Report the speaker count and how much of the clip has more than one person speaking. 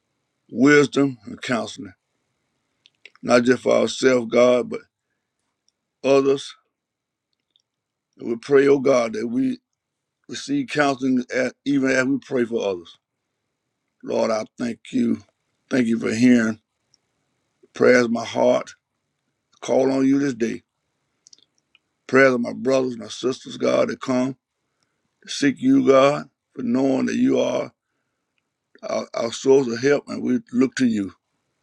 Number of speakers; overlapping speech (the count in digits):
1, no overlap